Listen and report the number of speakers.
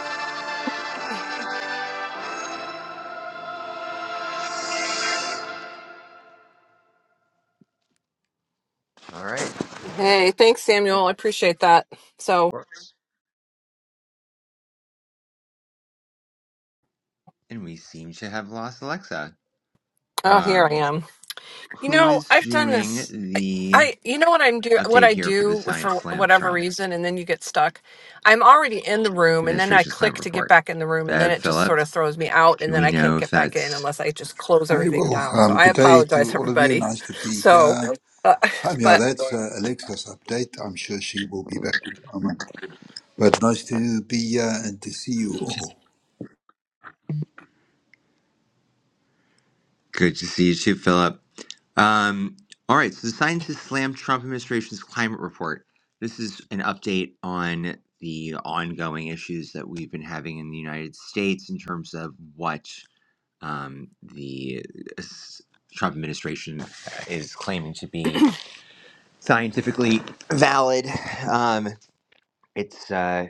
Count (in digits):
3